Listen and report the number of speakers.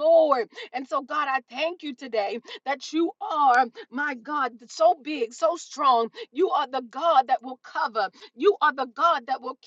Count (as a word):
one